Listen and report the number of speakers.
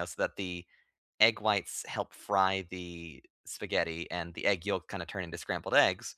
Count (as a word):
one